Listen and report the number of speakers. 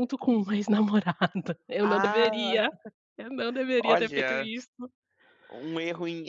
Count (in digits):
2